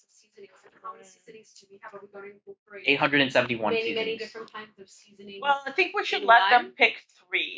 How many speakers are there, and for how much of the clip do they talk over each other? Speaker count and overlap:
3, about 30%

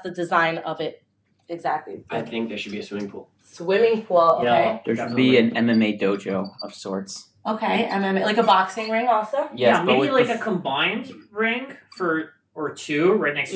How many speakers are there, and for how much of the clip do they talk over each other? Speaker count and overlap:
4, about 14%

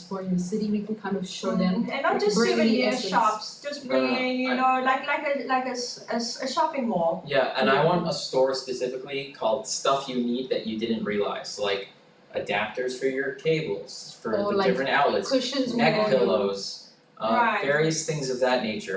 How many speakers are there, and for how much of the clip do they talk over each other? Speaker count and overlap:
3, about 34%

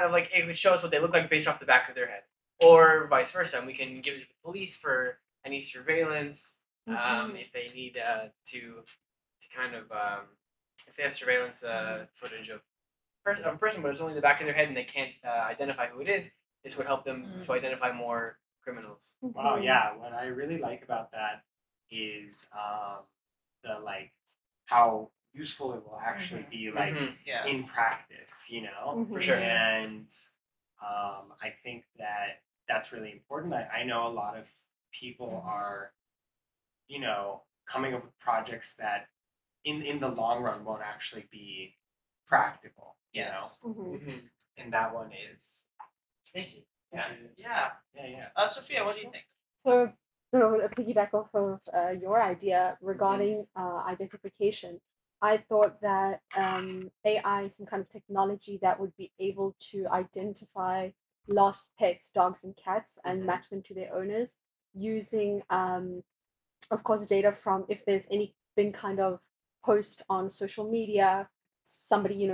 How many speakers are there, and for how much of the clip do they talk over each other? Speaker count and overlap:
4, about 7%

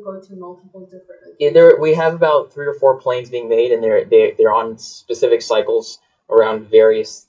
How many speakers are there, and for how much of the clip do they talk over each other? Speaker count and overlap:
2, about 10%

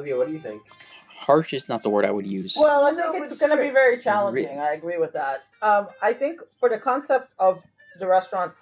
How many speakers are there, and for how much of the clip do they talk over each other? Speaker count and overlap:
3, about 15%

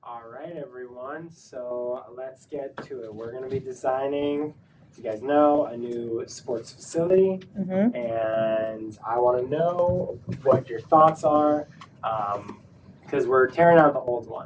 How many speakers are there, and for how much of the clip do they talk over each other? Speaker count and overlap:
1, no overlap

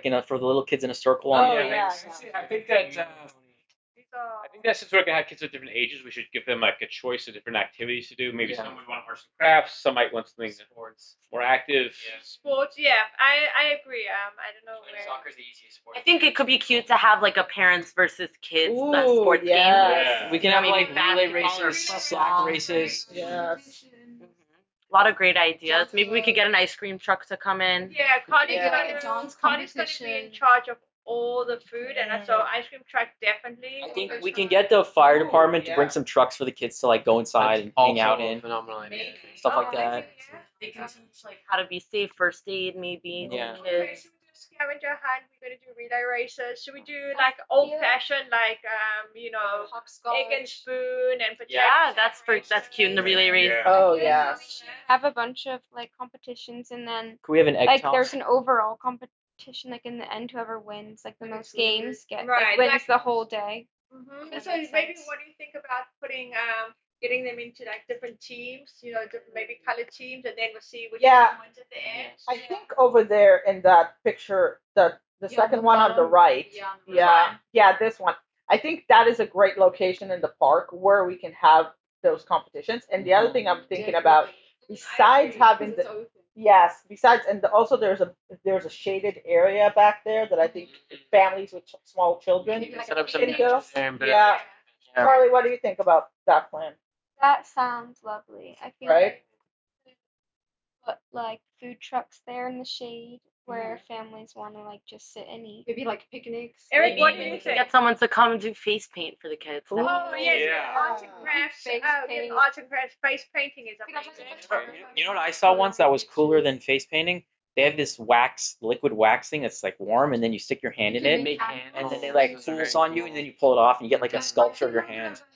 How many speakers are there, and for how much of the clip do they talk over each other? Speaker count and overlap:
8, about 39%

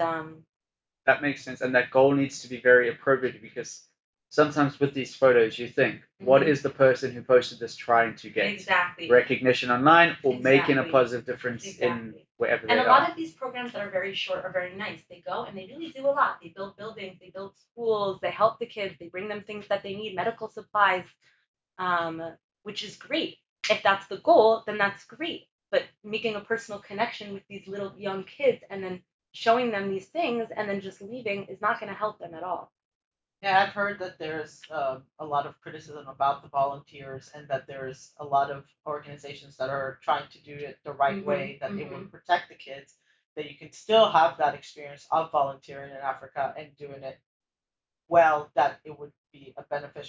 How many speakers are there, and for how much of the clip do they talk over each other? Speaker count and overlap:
3, about 7%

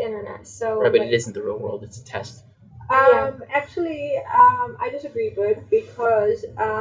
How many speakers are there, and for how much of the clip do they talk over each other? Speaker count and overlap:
3, about 10%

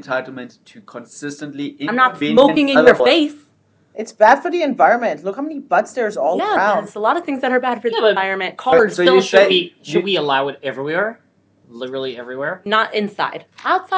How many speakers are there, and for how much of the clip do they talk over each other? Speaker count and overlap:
4, about 28%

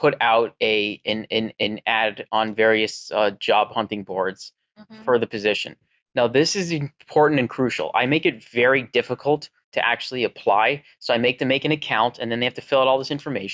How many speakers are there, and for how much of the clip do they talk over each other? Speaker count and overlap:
1, no overlap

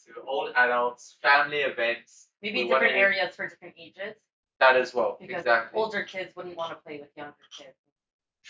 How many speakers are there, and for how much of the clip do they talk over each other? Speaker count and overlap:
2, about 16%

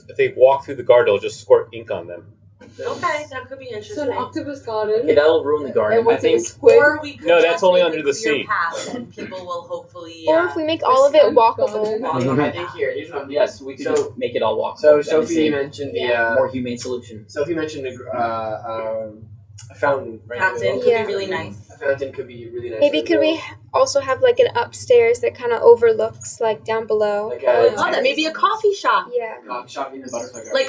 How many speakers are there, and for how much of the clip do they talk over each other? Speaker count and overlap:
6, about 37%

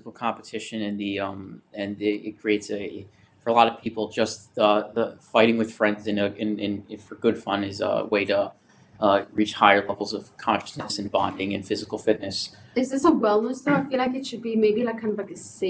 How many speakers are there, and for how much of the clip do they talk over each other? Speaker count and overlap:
2, no overlap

